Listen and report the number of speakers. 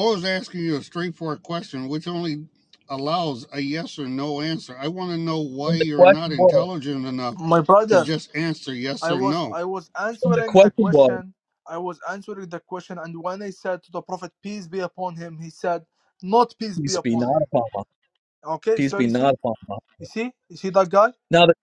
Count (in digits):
3